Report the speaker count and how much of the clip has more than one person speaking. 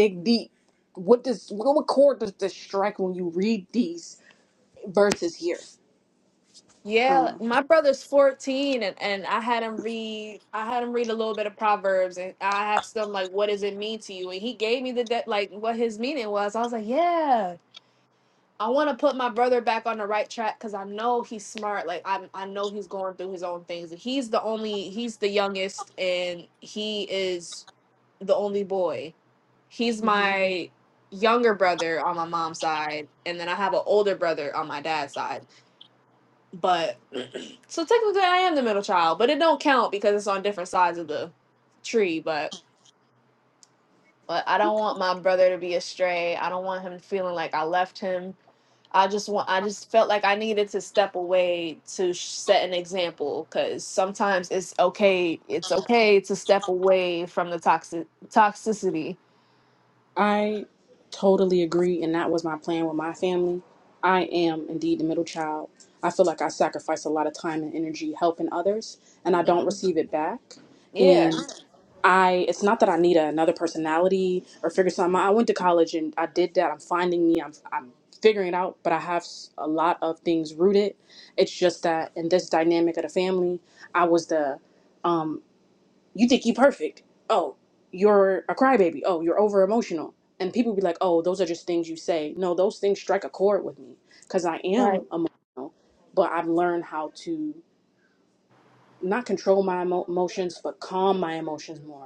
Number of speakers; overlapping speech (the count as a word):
two, about 1%